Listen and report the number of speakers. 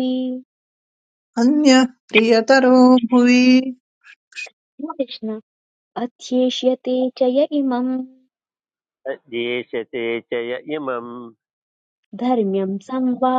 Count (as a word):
three